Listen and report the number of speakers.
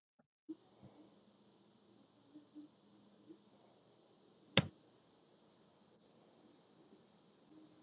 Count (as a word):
zero